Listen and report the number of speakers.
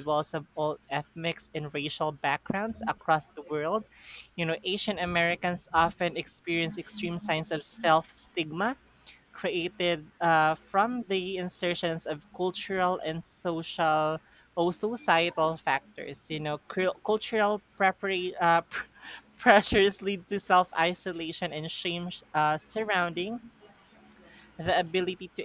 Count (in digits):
1